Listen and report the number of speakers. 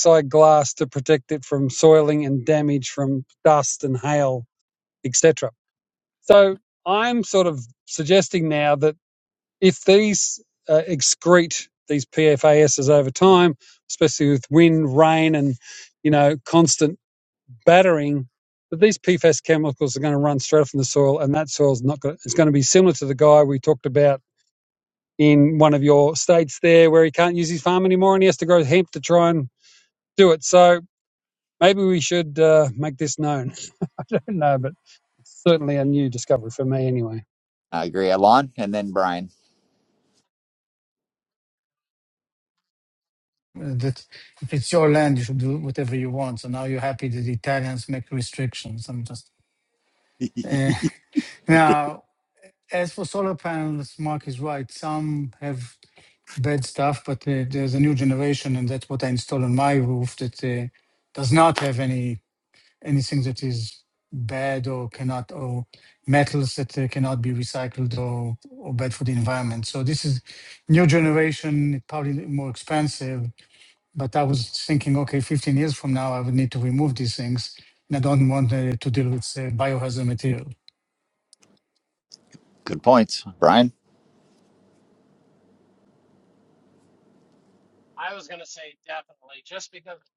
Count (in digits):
4